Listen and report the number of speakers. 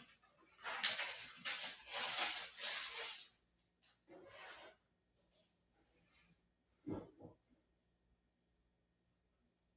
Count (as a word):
zero